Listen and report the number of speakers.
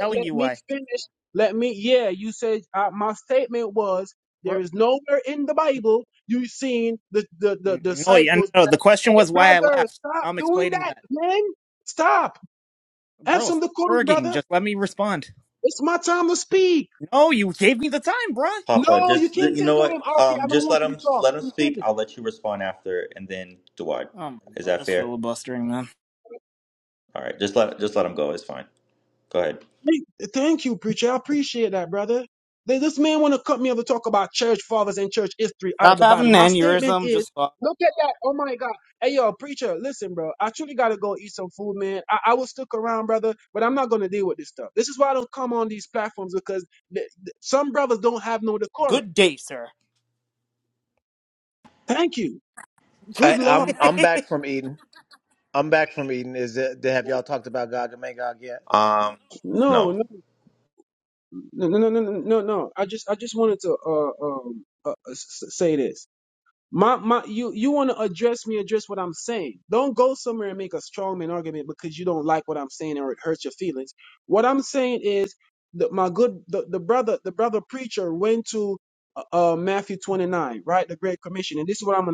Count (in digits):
4